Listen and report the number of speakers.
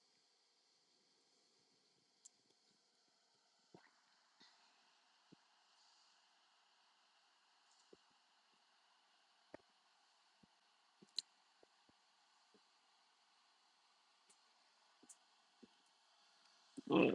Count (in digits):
0